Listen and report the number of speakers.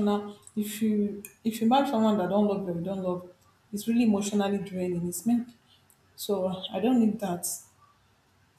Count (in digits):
1